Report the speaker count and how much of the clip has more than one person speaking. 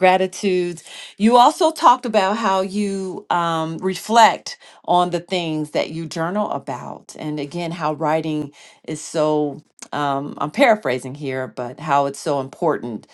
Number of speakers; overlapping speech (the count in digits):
1, no overlap